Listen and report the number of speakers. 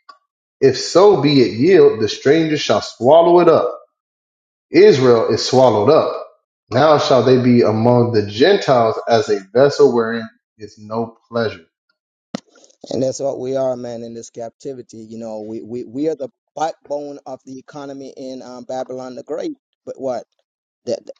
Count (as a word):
two